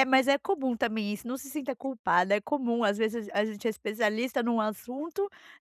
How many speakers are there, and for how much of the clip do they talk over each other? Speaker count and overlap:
1, no overlap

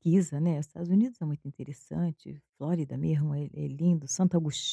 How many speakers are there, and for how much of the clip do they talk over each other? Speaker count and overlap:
1, no overlap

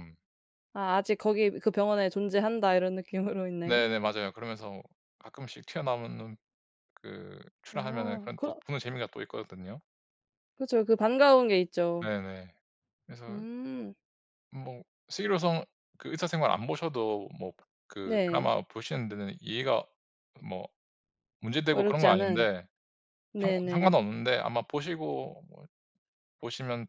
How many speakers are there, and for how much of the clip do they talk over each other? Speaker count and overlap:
2, about 11%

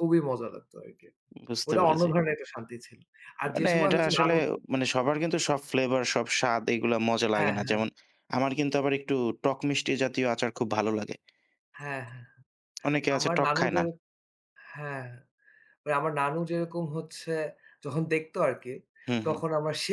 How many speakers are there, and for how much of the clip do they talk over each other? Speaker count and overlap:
2, about 14%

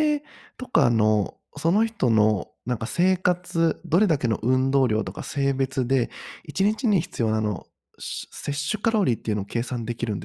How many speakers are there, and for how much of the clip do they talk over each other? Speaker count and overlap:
1, no overlap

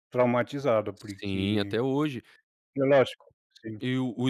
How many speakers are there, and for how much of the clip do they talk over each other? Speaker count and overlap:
2, about 13%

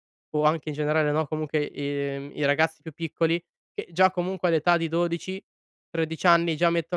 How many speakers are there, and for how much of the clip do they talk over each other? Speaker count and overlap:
1, no overlap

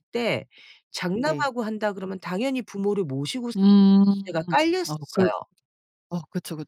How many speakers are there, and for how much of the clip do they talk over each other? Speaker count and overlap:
2, about 11%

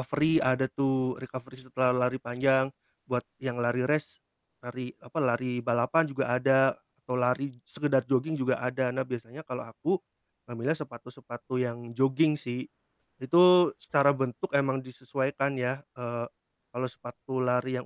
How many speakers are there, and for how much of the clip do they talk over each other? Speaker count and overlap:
1, no overlap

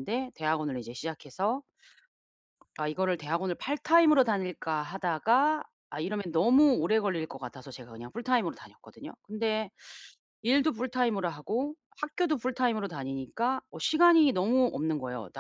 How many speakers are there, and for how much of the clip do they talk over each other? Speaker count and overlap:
1, no overlap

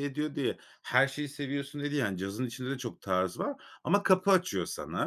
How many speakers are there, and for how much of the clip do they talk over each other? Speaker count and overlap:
1, no overlap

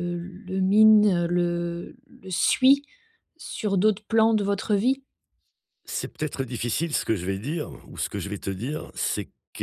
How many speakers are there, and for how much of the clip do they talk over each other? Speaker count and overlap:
2, no overlap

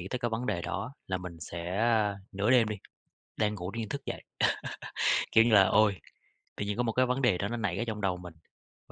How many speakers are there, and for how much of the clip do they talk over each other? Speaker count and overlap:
1, no overlap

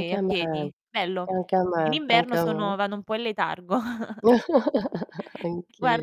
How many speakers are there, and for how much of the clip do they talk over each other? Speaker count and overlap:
2, about 26%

